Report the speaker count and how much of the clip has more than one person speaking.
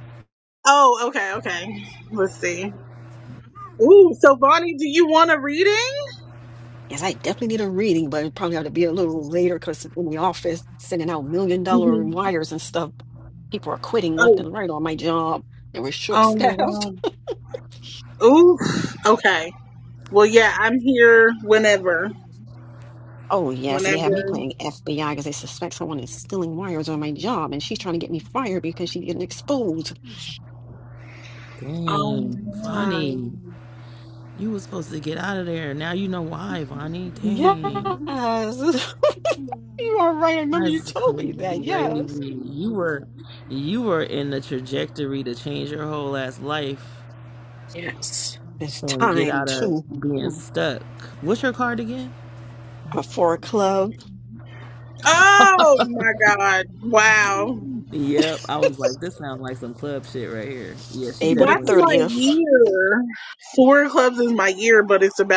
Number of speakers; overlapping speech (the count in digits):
3, about 10%